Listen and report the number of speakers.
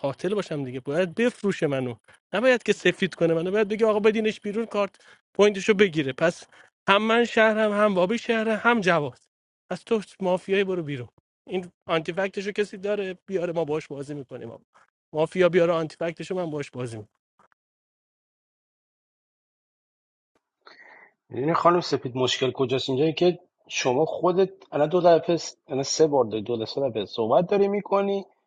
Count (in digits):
2